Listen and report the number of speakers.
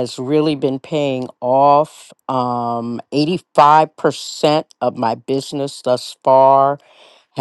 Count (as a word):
one